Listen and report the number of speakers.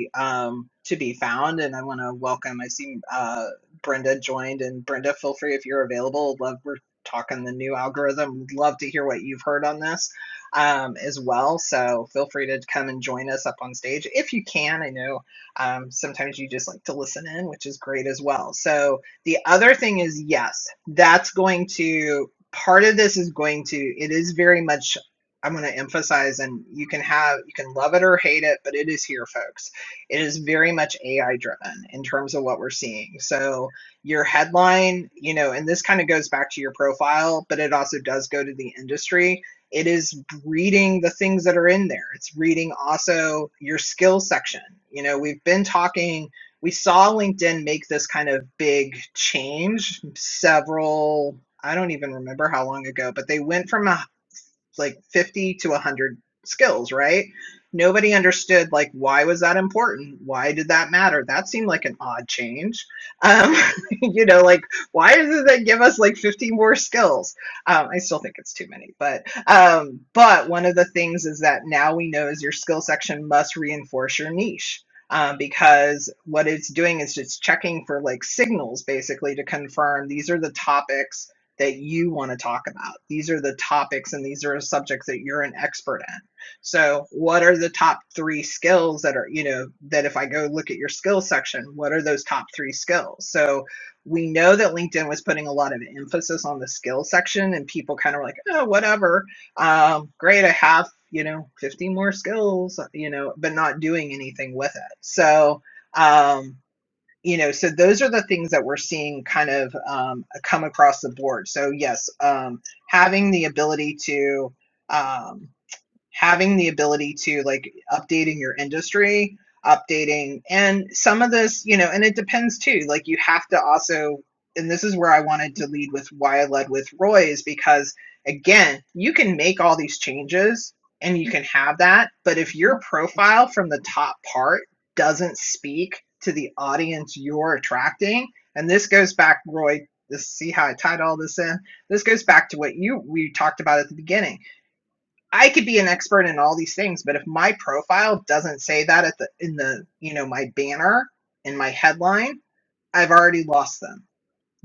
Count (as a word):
one